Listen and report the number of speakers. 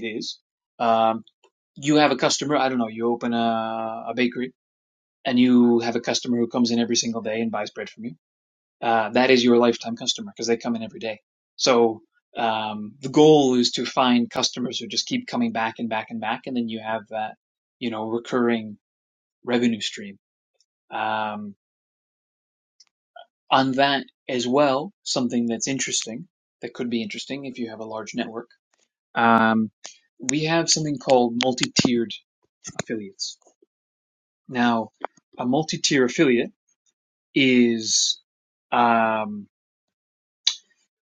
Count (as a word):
one